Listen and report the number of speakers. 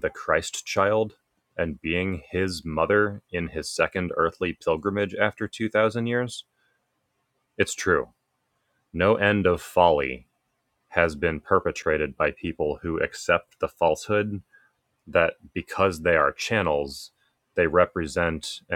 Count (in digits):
1